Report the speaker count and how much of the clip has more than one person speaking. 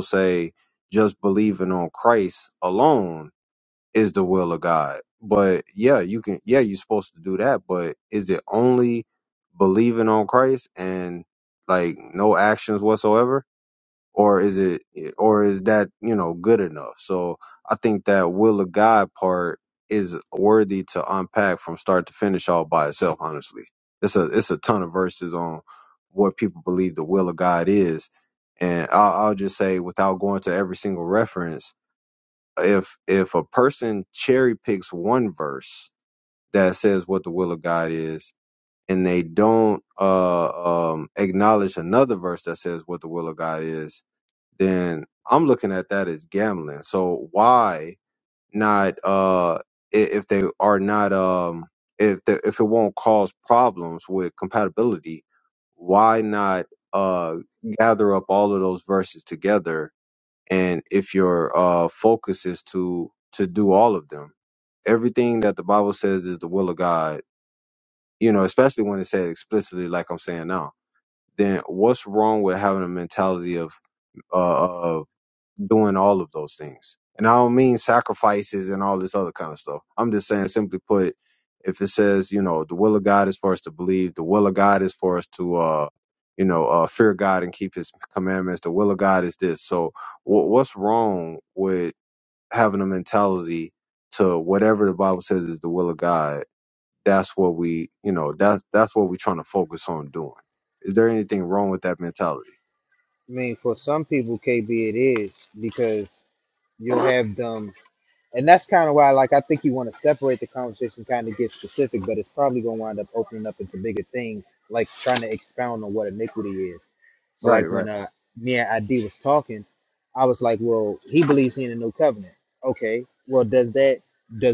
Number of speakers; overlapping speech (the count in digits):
2, under 1%